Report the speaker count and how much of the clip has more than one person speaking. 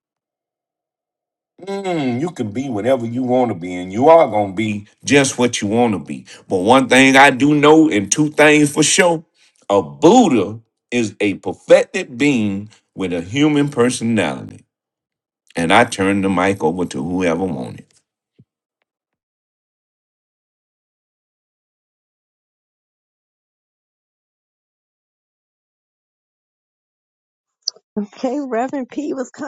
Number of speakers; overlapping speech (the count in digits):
2, no overlap